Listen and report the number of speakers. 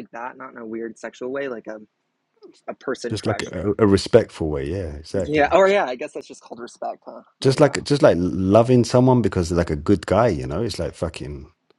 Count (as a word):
two